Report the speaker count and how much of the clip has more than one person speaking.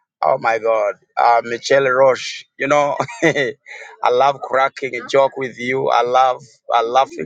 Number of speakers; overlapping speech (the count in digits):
1, no overlap